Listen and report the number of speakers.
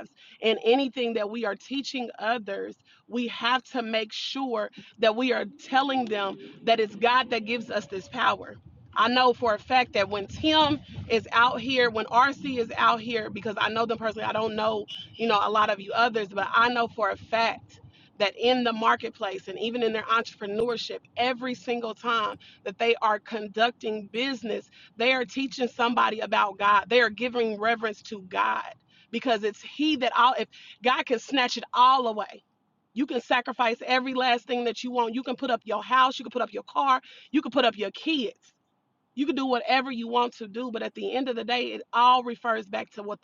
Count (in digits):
1